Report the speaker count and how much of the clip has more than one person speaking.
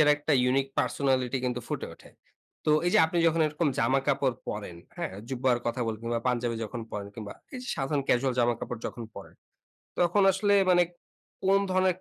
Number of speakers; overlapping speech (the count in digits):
1, no overlap